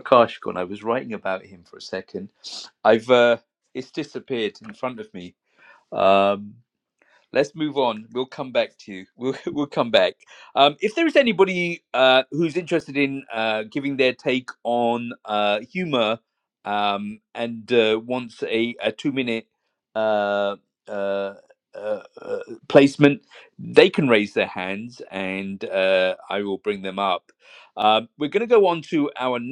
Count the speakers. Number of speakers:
one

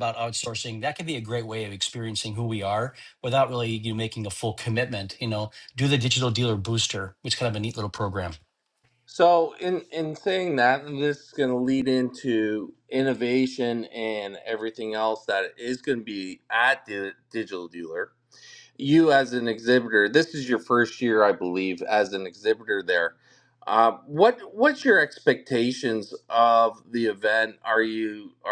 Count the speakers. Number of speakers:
two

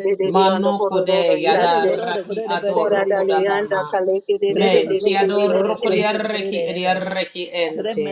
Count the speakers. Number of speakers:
three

